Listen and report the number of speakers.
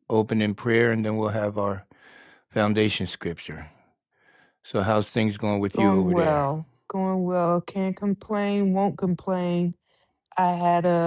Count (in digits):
2